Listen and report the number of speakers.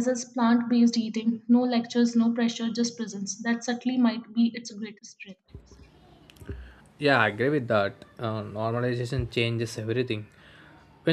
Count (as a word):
two